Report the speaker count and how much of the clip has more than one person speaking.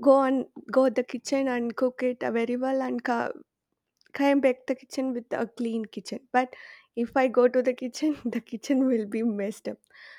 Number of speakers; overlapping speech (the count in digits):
1, no overlap